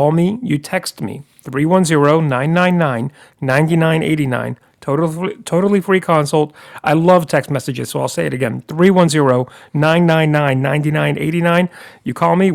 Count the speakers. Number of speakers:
1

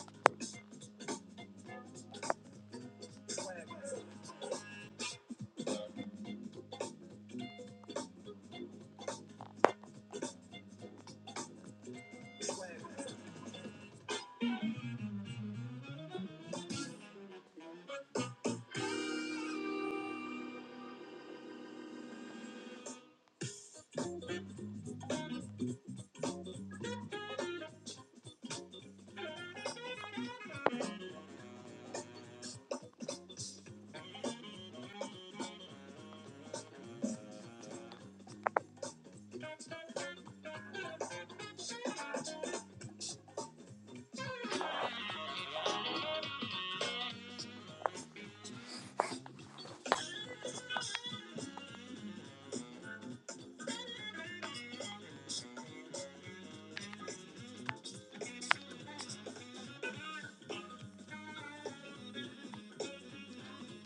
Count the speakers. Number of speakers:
0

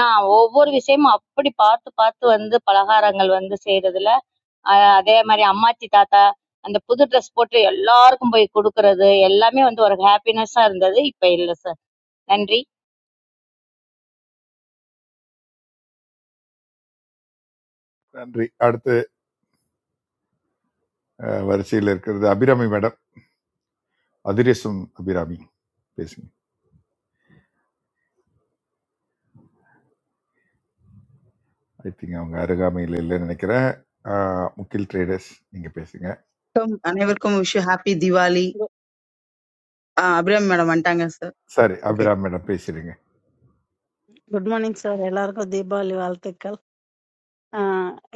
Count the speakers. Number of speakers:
4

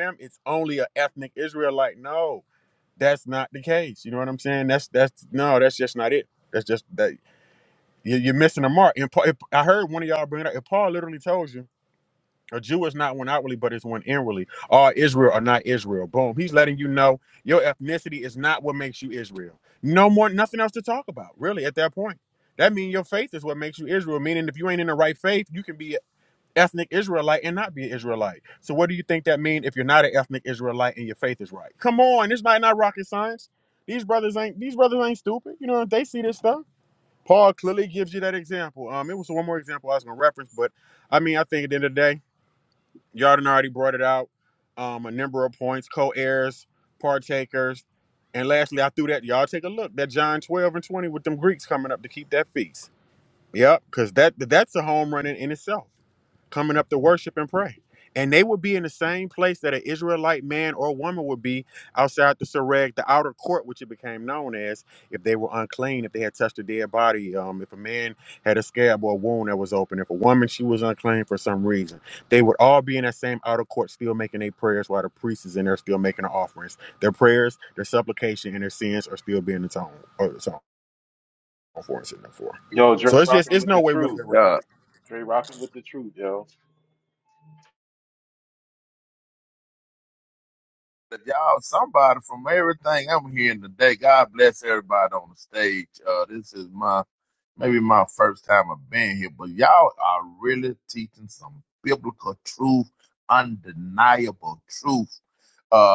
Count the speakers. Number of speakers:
3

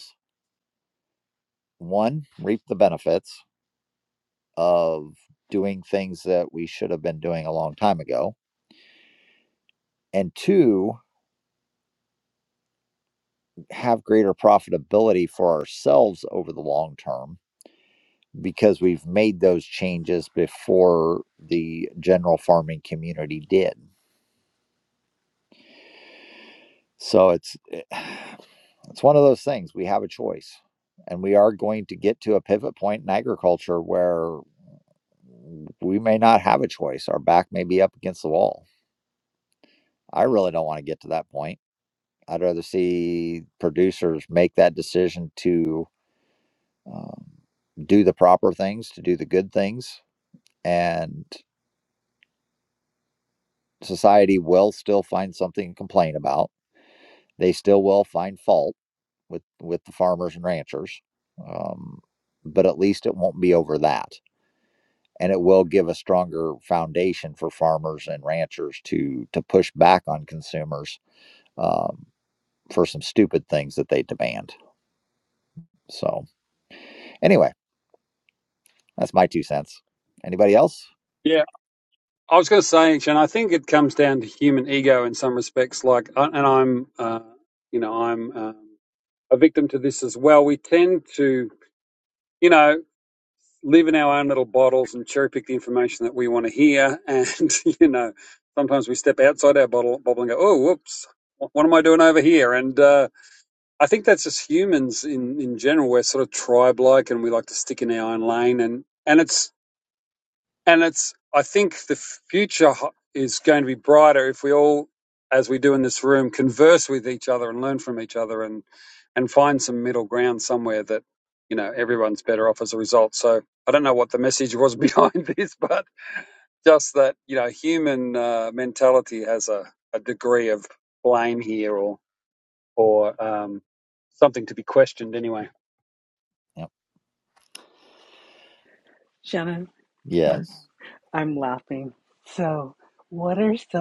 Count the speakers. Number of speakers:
3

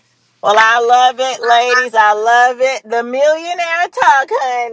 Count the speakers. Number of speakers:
1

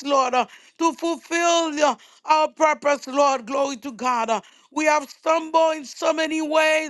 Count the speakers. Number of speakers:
1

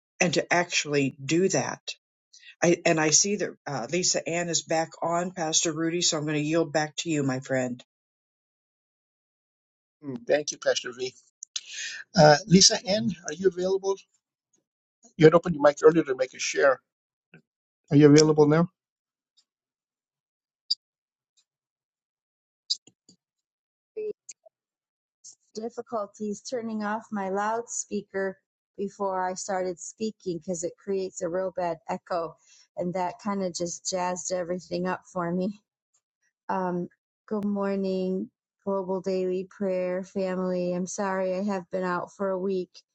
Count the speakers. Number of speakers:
3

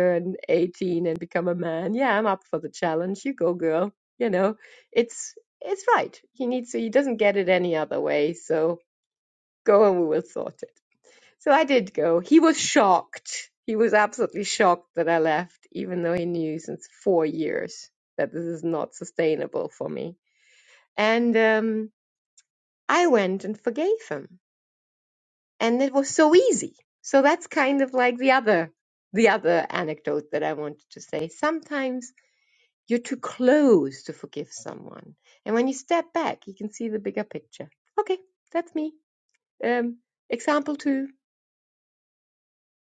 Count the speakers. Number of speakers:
1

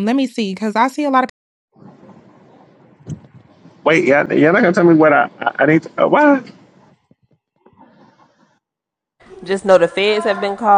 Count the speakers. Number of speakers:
3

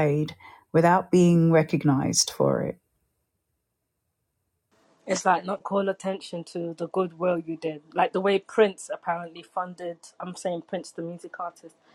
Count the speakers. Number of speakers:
2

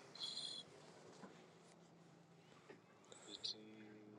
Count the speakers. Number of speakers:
0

